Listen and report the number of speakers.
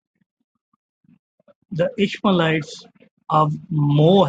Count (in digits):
1